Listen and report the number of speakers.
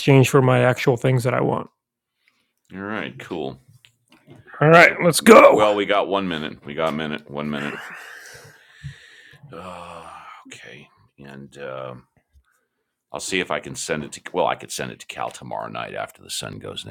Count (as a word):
two